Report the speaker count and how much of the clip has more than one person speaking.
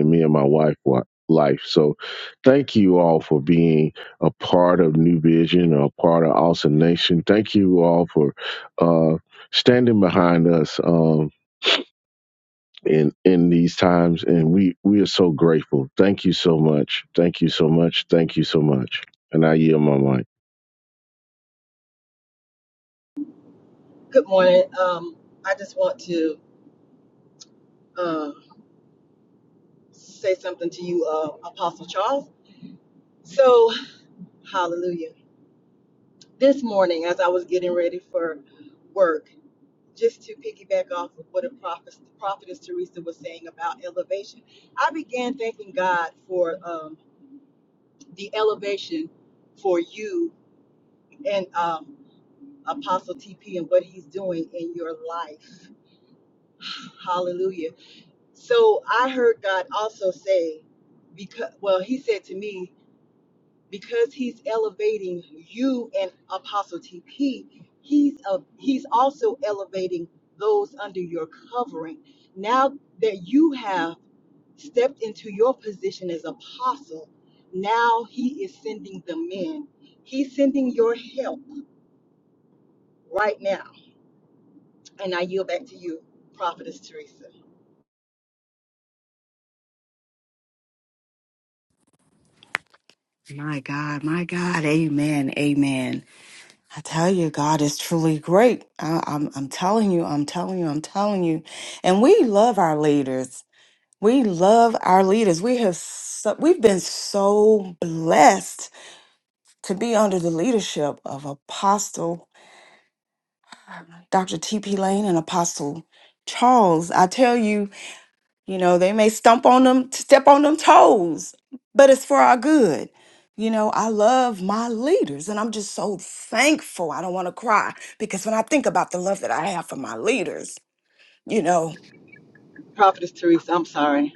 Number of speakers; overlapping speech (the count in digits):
3, no overlap